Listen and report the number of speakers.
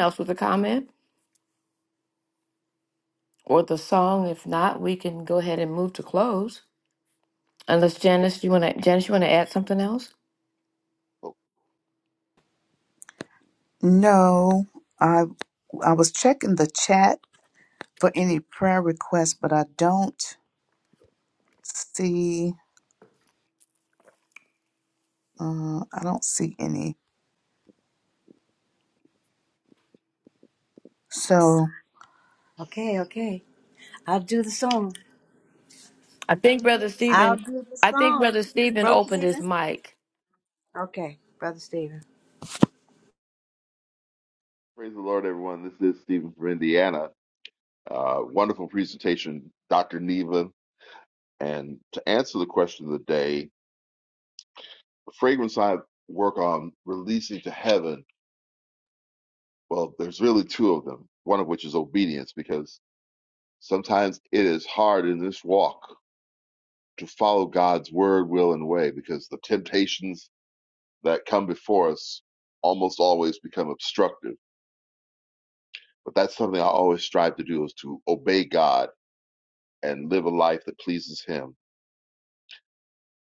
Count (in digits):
4